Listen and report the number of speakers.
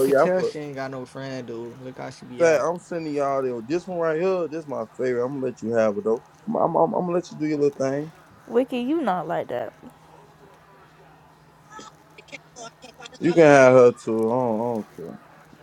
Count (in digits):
3